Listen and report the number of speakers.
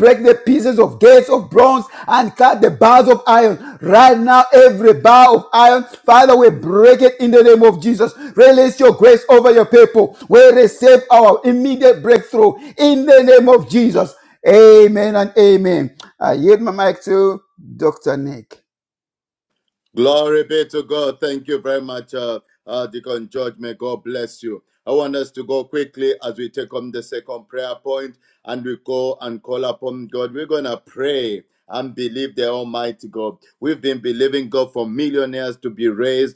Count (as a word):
two